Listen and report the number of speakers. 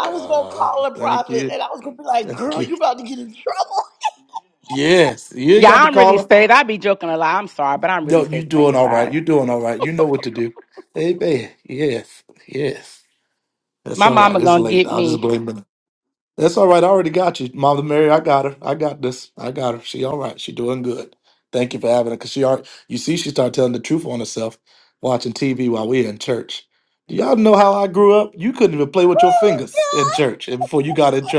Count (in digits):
3